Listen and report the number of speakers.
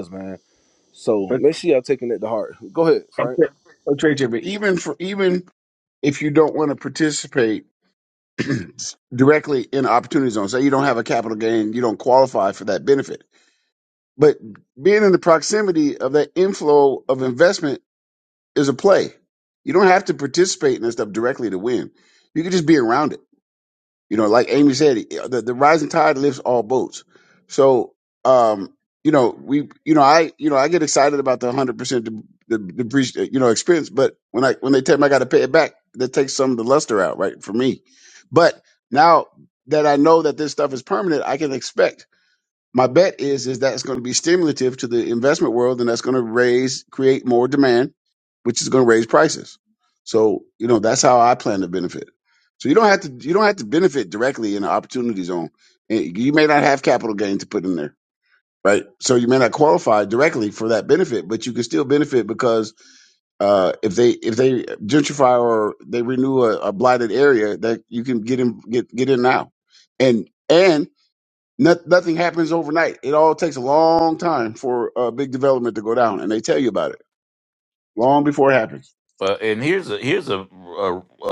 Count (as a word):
three